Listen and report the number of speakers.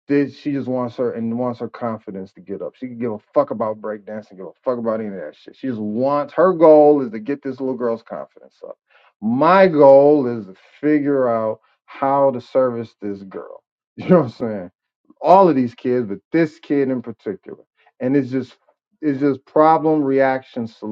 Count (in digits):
1